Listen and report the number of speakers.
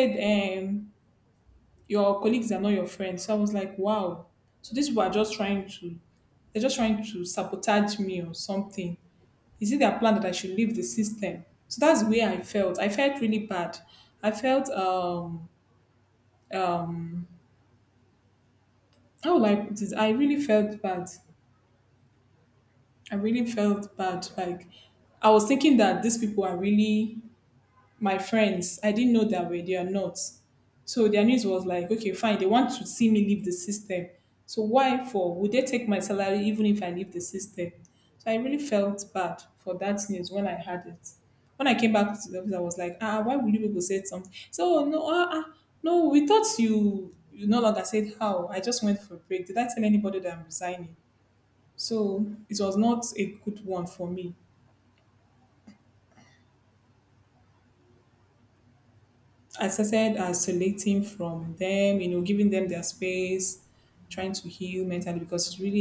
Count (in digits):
1